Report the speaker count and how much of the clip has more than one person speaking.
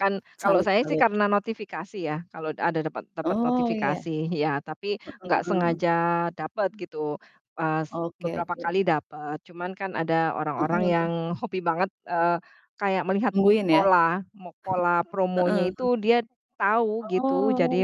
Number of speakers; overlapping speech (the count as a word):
two, about 21%